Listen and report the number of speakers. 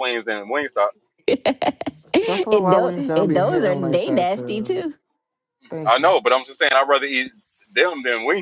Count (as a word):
three